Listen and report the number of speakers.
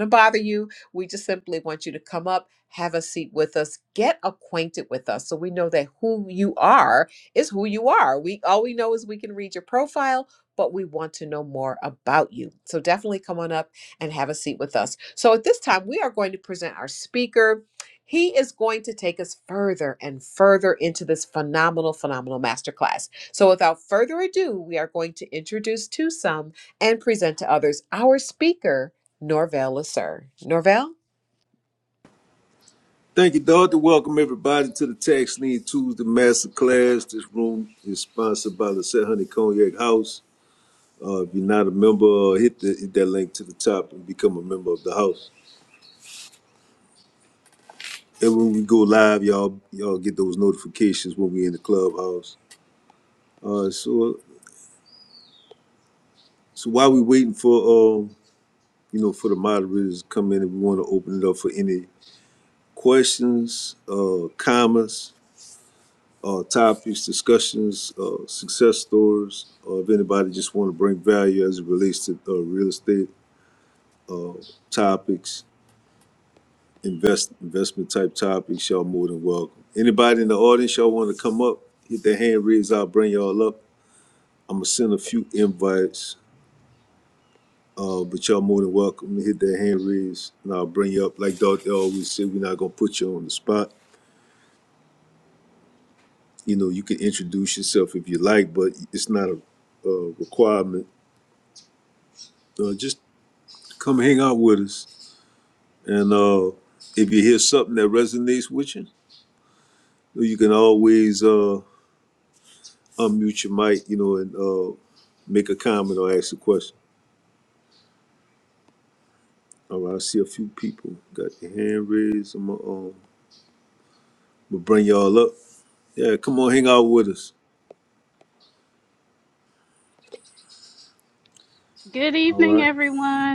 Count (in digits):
3